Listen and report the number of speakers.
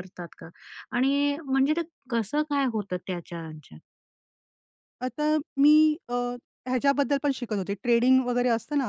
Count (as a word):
two